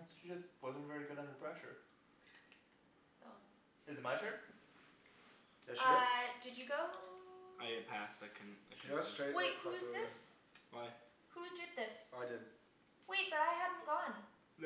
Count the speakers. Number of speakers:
4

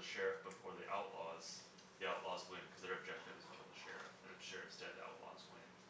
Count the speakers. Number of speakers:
1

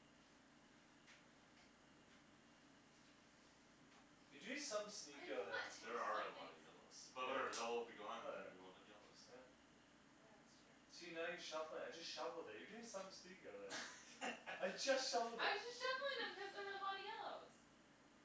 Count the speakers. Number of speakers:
3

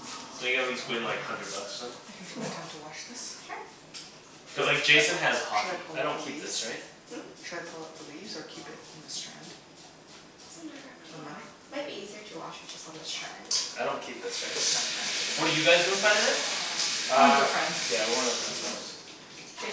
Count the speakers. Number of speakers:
4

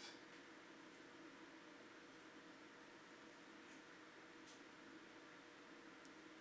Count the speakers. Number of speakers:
0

